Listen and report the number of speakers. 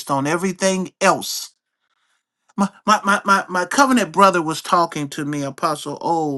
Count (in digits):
1